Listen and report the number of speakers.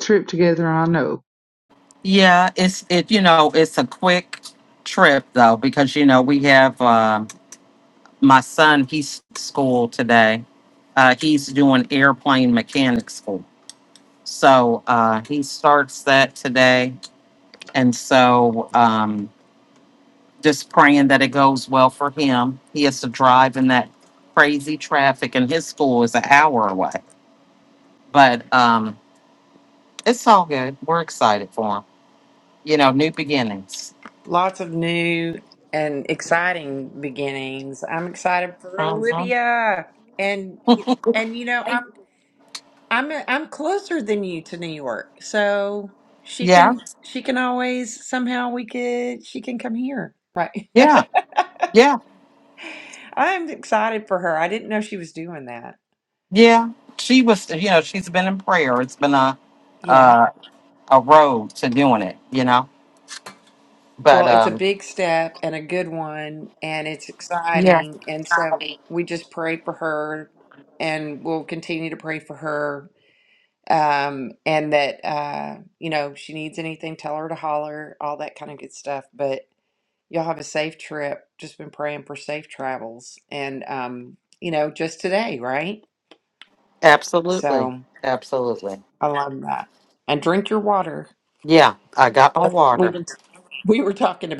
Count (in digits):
3